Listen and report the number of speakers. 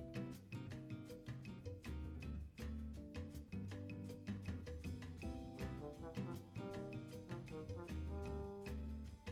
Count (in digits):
0